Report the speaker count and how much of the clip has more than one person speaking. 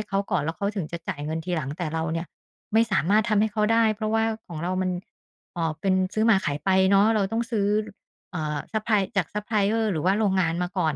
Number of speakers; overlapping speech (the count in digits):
1, no overlap